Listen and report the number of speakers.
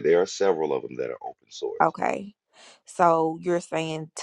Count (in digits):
2